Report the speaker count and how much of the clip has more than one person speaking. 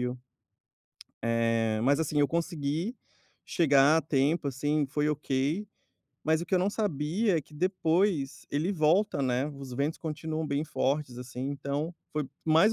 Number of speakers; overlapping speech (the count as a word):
one, no overlap